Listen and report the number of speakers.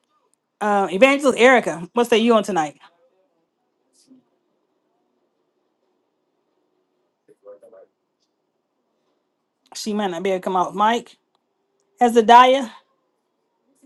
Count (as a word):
one